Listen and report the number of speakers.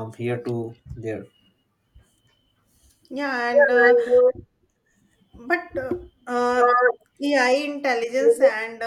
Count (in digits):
2